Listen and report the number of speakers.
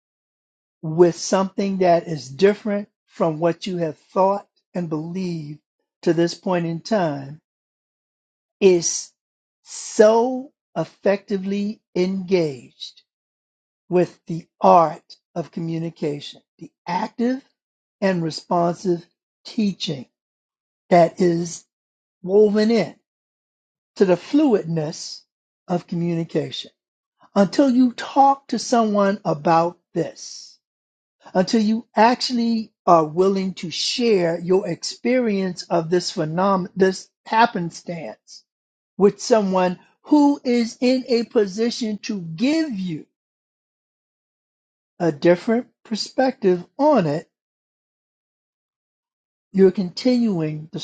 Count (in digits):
1